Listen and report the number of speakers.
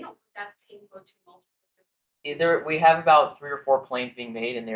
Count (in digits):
2